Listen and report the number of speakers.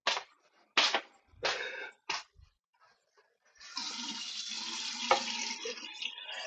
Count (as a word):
zero